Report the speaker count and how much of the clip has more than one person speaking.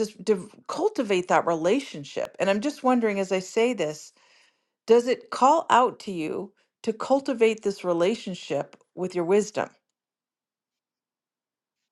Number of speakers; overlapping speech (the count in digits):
1, no overlap